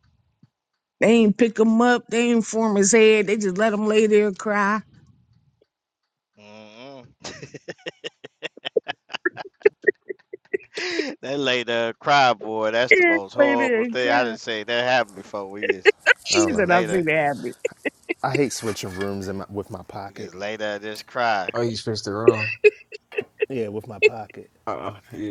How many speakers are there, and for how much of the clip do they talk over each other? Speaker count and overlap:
4, about 9%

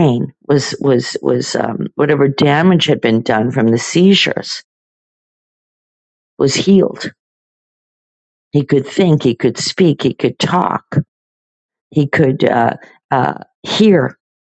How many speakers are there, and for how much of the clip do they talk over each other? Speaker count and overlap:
1, no overlap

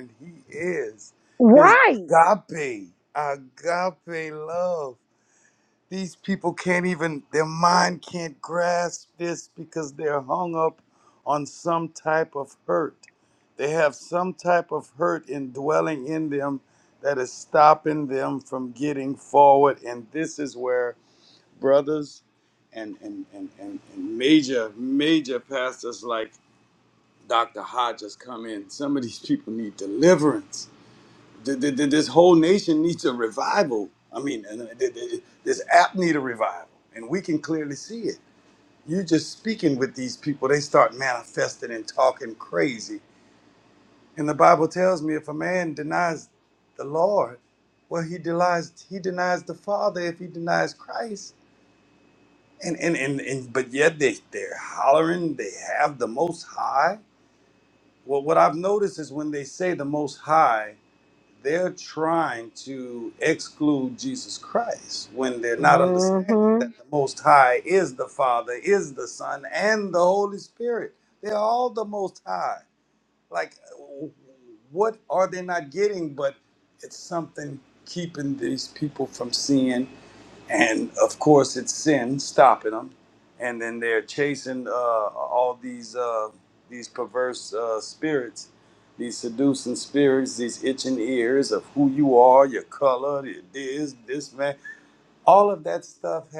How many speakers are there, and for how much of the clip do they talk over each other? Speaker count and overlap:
2, about 2%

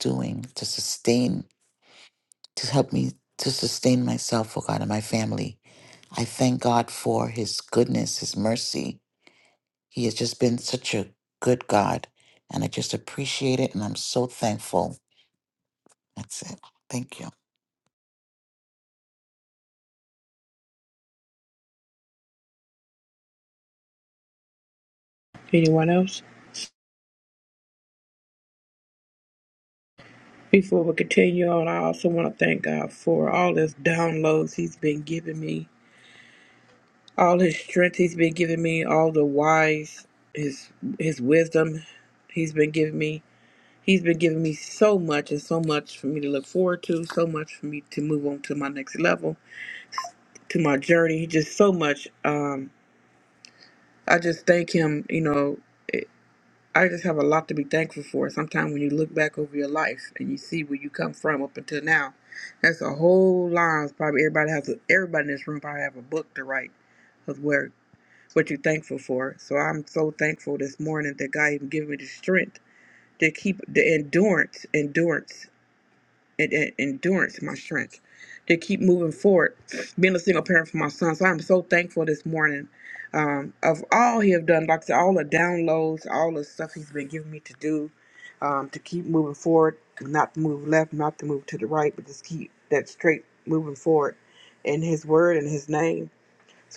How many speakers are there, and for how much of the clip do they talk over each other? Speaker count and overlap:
2, no overlap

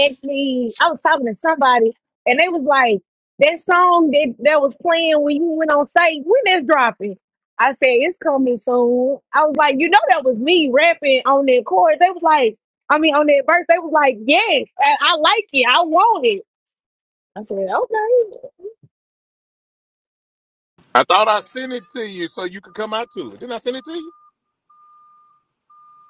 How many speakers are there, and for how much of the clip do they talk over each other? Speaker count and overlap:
2, no overlap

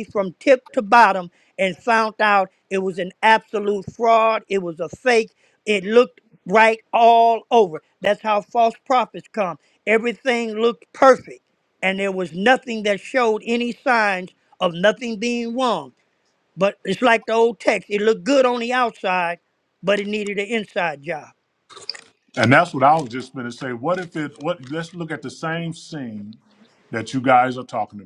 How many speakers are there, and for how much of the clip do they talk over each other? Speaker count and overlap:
2, no overlap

